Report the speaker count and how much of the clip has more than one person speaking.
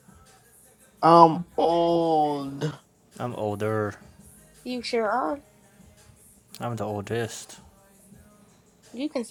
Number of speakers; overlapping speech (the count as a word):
three, no overlap